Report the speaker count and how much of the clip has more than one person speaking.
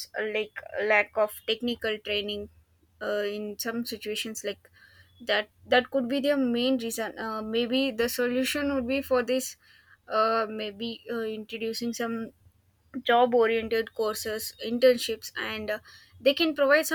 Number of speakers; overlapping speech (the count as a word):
one, no overlap